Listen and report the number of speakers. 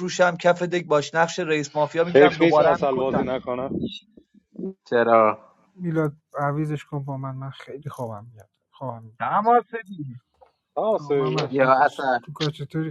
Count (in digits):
4